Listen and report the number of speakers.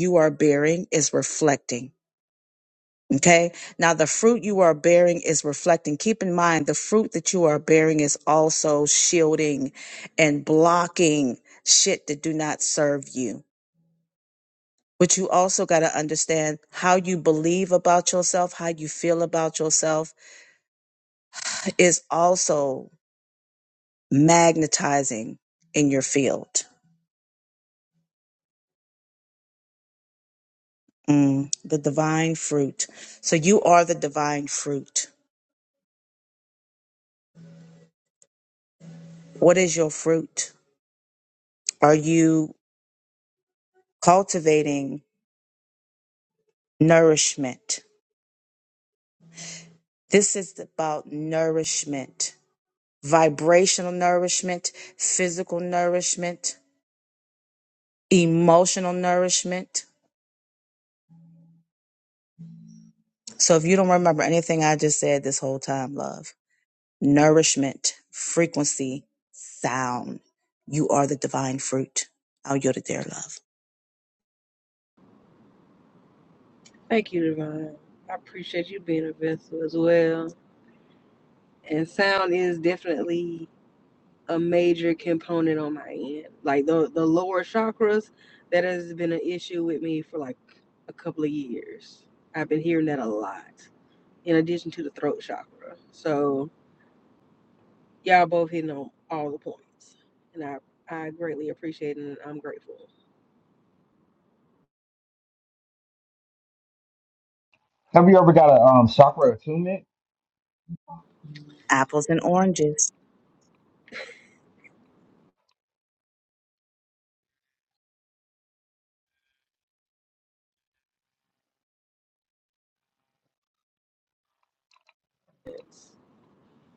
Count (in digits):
3